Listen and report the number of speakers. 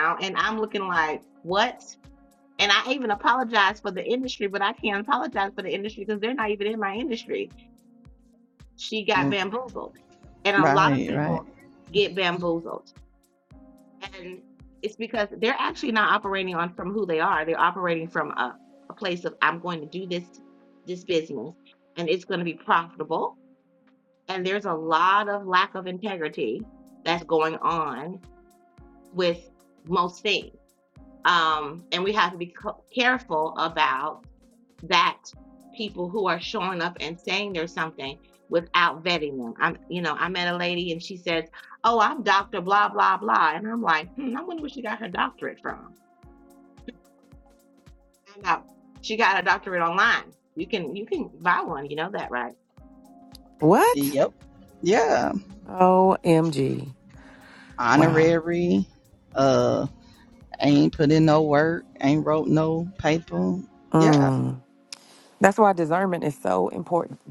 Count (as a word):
three